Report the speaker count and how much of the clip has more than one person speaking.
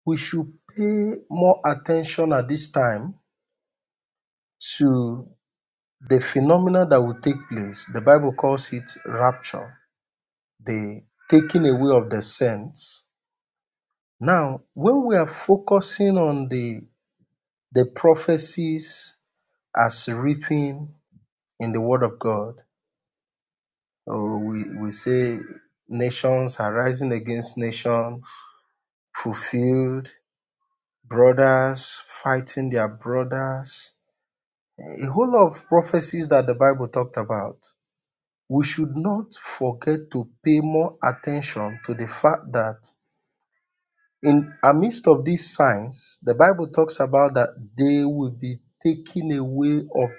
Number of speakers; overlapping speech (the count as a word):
one, no overlap